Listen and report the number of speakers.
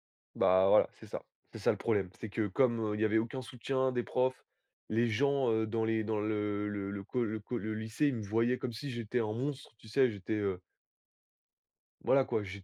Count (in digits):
1